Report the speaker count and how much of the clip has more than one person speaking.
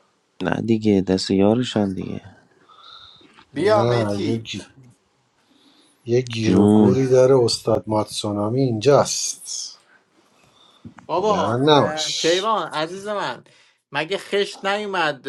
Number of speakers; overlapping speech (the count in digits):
3, about 18%